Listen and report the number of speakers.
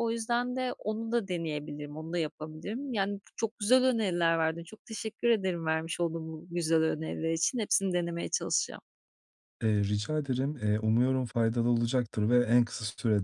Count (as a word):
two